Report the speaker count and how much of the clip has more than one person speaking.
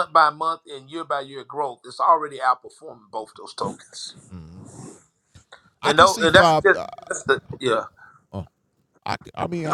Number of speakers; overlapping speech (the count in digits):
2, about 11%